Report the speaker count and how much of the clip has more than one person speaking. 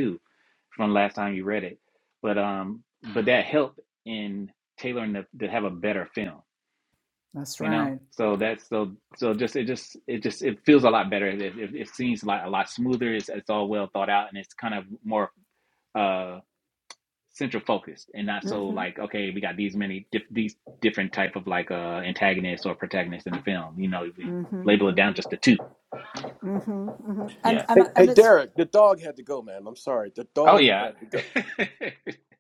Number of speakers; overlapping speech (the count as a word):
three, about 9%